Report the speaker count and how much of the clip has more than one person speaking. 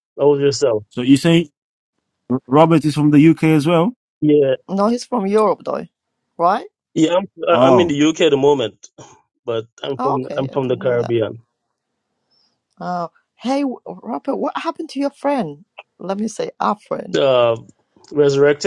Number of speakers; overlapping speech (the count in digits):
3, about 8%